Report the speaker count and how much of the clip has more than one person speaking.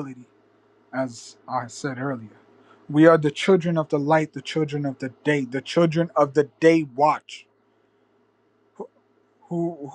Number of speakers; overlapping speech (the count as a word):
one, no overlap